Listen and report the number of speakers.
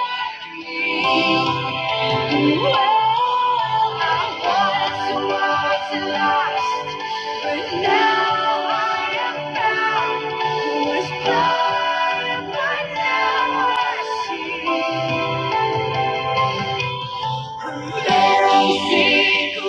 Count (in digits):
1